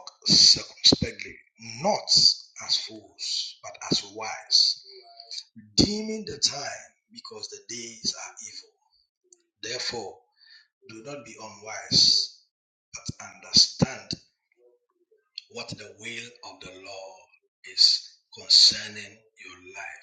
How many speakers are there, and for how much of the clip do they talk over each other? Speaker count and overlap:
one, no overlap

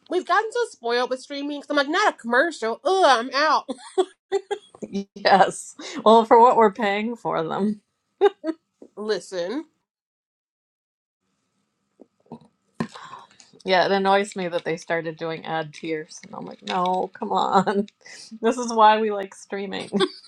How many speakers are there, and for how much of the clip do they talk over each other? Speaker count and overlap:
two, no overlap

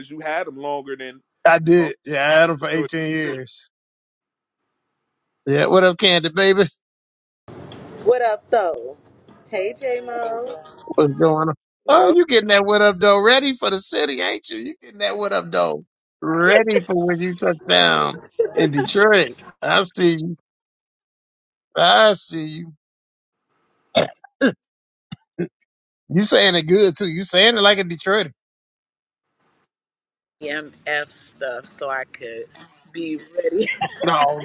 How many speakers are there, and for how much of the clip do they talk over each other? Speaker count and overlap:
three, about 2%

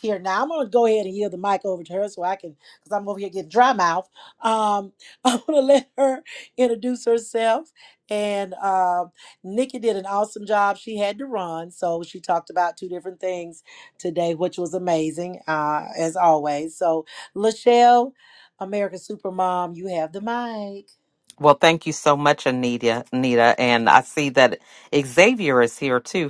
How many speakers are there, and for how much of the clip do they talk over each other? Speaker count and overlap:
two, no overlap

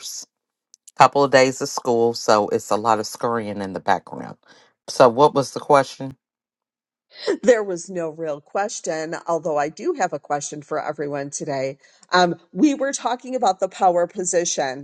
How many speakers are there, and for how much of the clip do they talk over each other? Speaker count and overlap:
two, no overlap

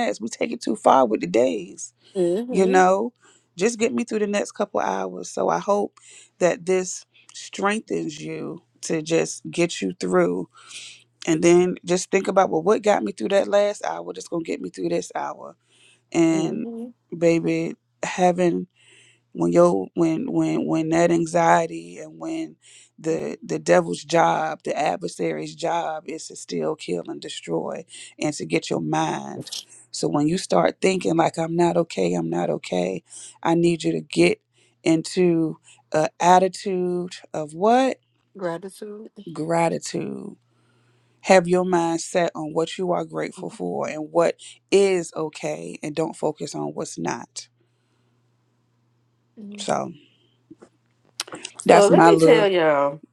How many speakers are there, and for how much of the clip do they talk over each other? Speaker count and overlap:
three, about 3%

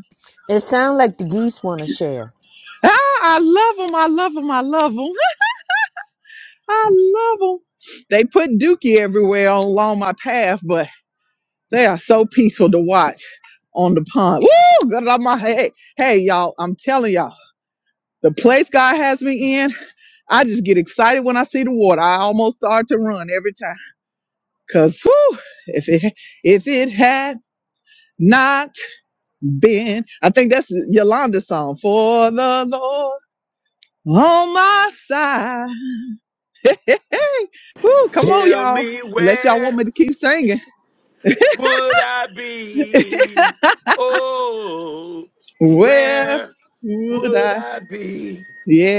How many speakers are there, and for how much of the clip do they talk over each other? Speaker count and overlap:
three, about 5%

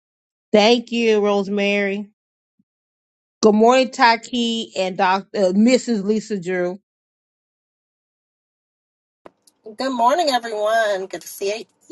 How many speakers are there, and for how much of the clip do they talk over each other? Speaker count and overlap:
two, no overlap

